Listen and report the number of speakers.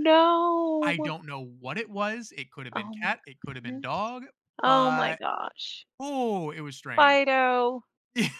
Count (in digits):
2